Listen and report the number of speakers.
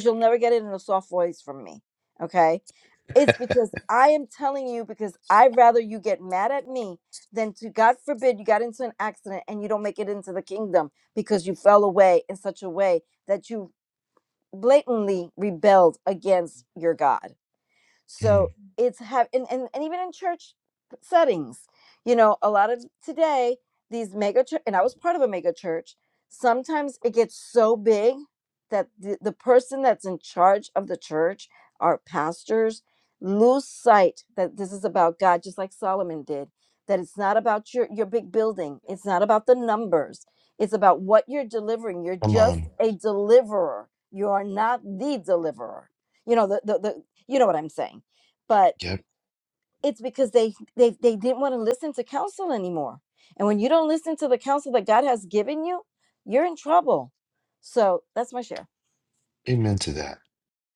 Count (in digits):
2